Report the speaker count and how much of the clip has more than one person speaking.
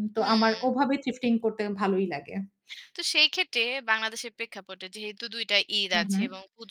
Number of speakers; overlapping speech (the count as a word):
two, about 12%